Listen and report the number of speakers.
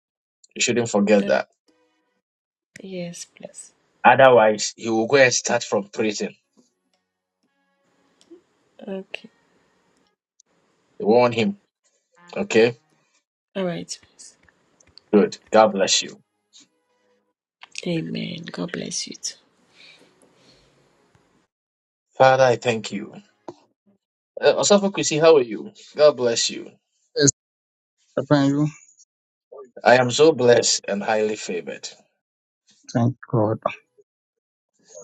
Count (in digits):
3